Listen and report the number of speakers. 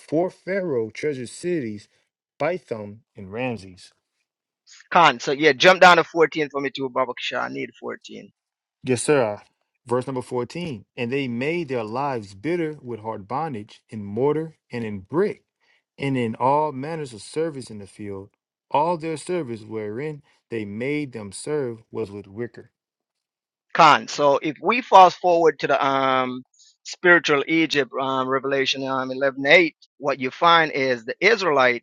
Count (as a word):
two